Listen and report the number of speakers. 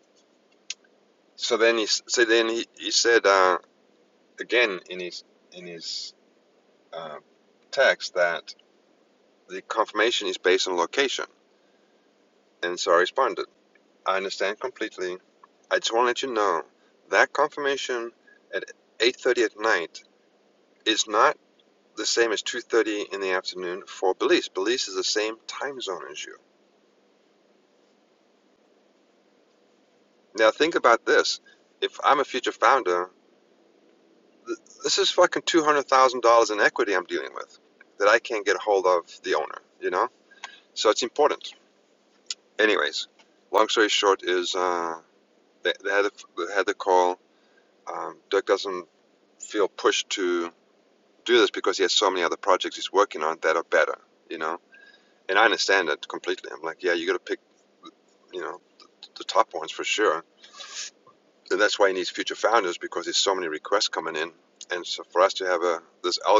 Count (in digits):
1